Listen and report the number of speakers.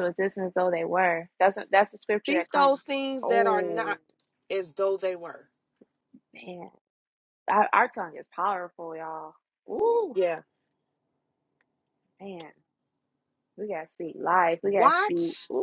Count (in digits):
2